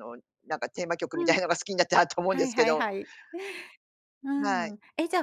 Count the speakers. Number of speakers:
two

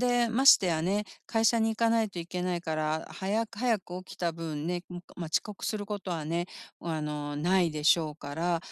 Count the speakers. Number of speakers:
one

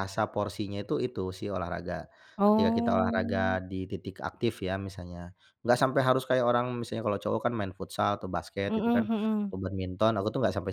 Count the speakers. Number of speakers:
two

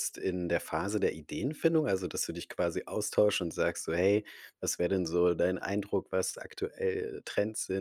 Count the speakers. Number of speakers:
one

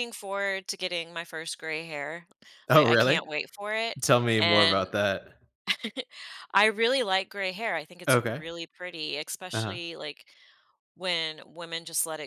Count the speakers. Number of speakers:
two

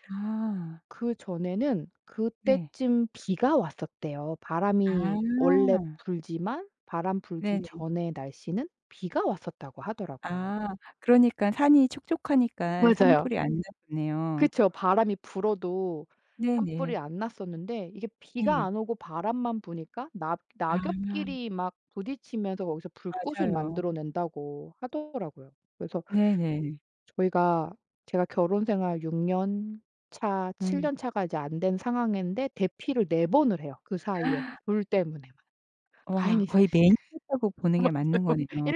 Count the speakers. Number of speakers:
two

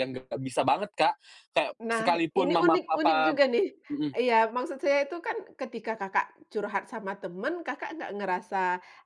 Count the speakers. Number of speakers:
two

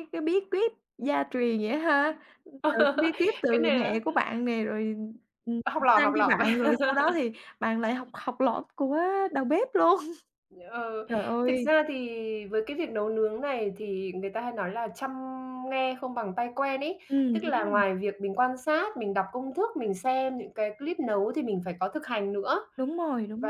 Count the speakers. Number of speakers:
two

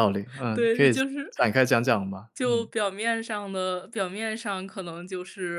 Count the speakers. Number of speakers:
two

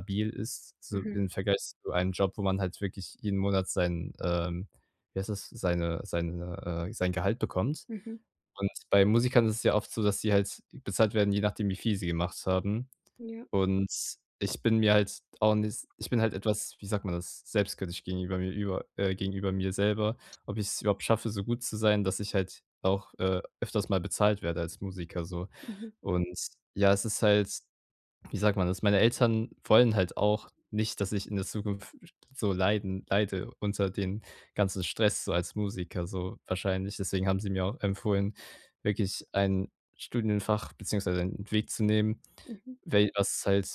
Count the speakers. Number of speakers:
two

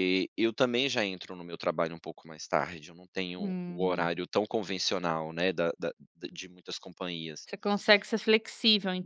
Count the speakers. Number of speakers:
two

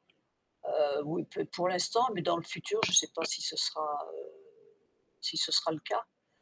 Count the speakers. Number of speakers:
one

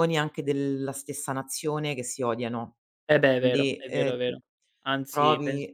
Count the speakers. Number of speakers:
two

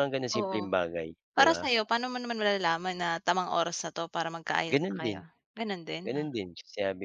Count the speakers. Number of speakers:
two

